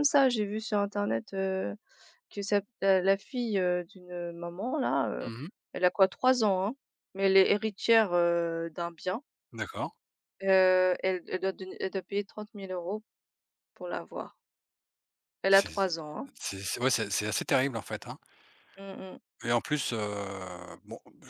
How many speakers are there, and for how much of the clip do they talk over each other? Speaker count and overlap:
2, about 2%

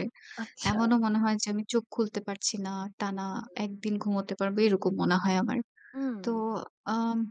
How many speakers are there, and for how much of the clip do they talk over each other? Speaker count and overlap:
2, about 7%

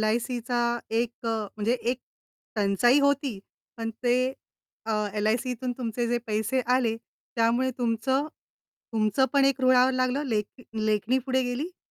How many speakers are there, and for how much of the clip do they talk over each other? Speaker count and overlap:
1, no overlap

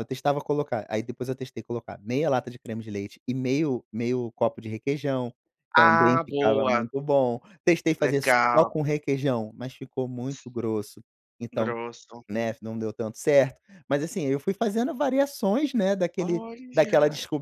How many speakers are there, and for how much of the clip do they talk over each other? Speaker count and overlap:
2, about 16%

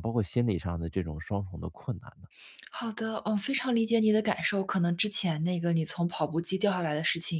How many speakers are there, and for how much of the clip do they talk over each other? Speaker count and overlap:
2, no overlap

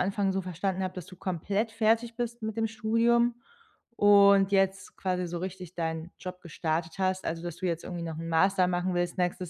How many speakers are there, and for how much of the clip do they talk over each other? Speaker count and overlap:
1, no overlap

